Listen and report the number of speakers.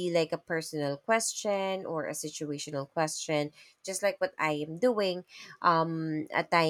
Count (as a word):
one